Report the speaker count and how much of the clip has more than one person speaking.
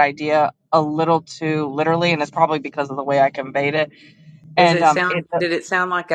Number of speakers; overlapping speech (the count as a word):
two, about 10%